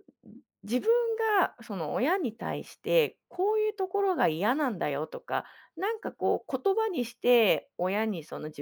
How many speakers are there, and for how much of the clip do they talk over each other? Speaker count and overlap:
one, no overlap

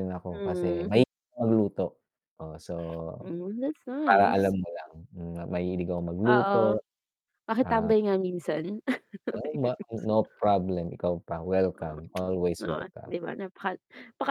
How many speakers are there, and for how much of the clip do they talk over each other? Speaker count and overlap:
two, about 16%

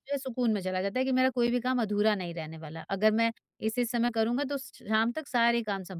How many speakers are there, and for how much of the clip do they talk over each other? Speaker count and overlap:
one, no overlap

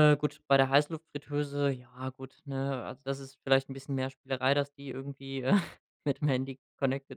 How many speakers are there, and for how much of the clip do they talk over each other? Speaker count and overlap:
one, no overlap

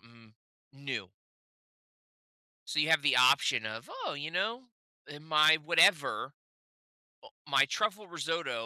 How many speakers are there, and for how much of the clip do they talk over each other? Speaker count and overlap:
one, no overlap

